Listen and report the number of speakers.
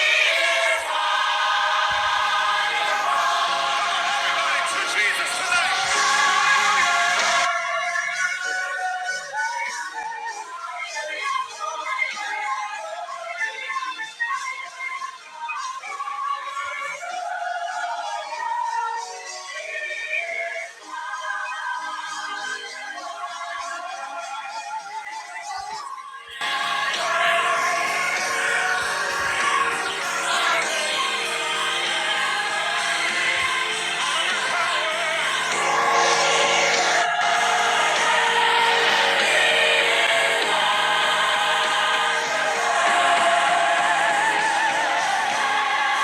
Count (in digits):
0